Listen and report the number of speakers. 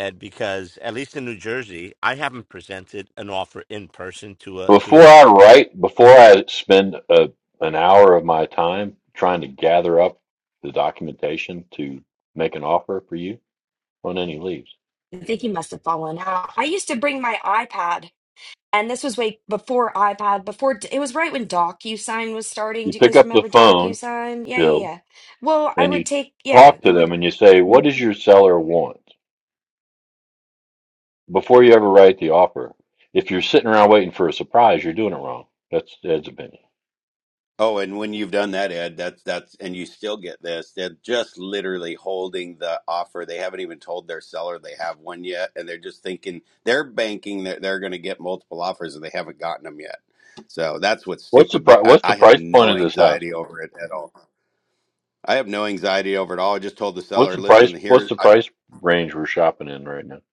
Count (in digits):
4